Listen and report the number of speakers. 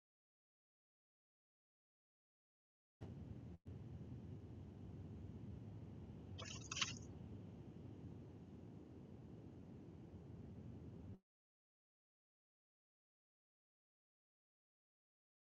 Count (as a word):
zero